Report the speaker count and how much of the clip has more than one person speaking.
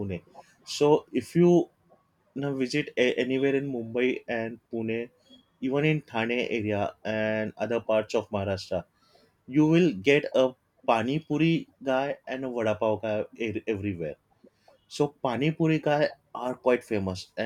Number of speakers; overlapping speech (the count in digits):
1, no overlap